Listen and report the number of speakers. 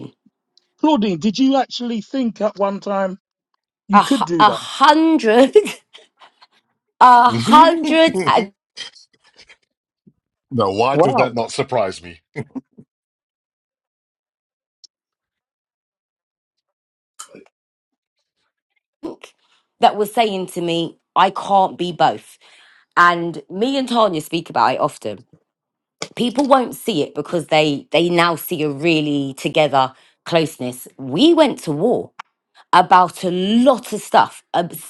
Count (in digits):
3